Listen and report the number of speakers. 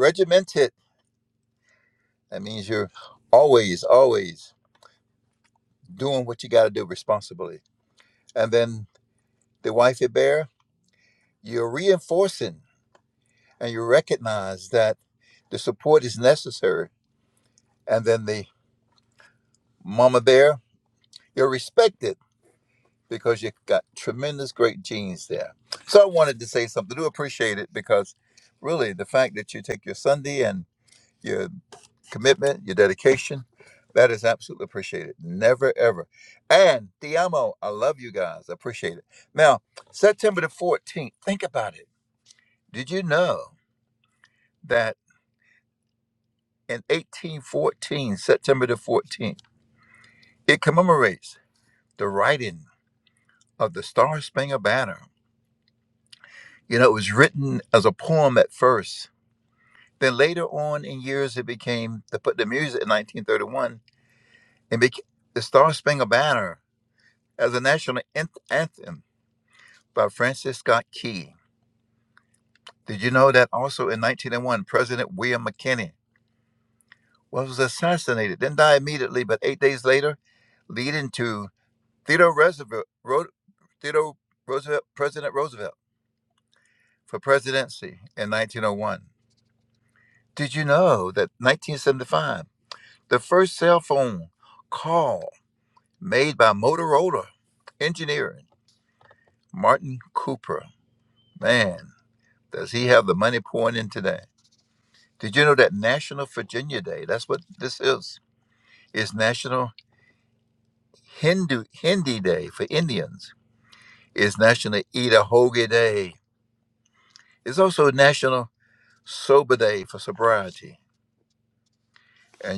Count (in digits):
1